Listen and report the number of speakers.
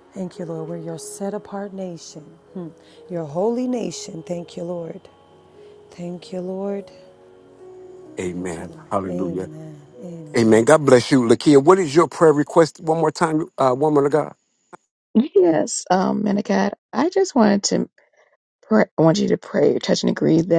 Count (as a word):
three